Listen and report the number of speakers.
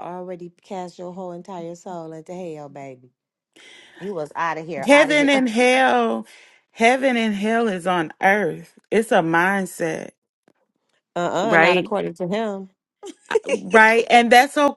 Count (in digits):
2